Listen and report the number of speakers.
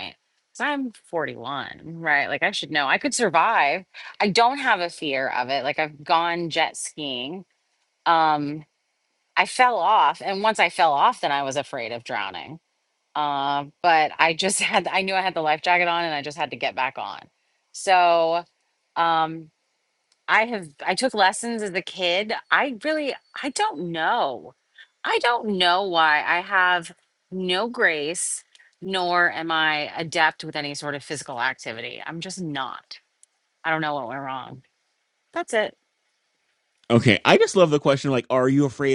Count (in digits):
2